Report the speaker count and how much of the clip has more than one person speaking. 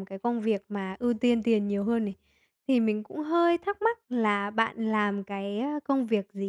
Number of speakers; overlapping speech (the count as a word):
one, no overlap